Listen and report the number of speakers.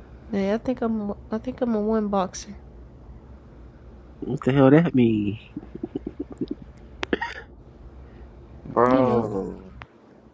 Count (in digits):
3